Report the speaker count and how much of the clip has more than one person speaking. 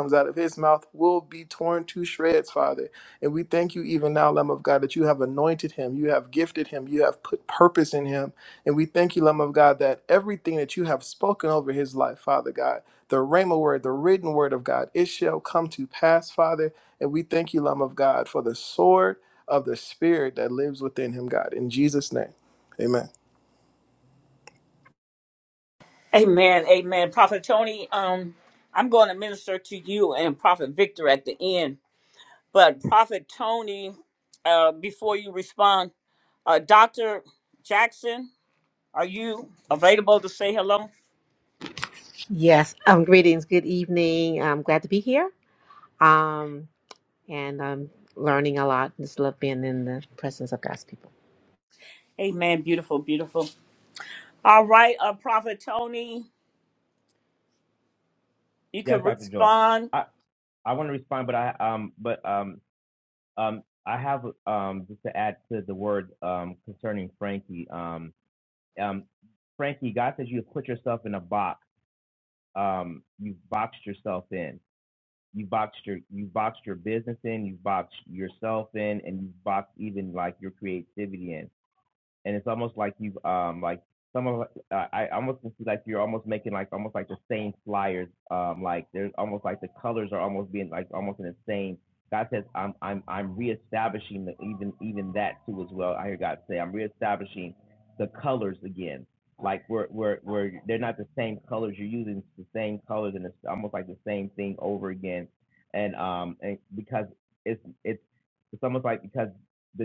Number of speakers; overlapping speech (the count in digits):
4, about 1%